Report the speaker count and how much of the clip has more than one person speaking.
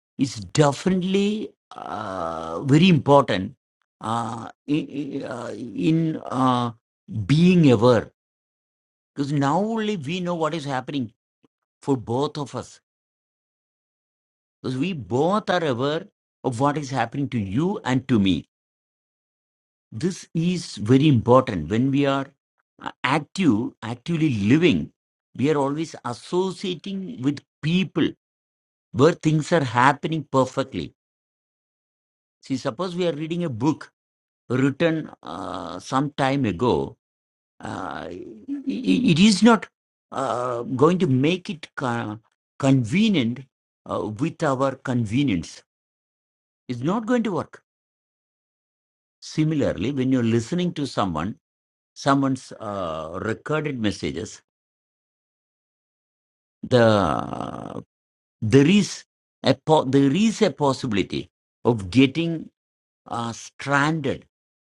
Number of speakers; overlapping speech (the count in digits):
1, no overlap